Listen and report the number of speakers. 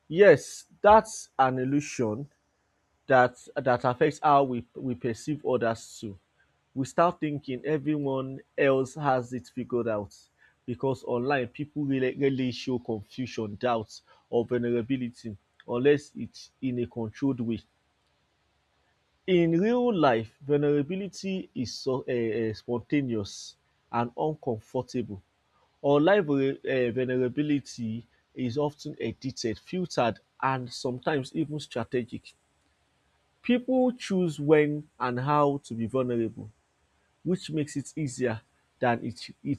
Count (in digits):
1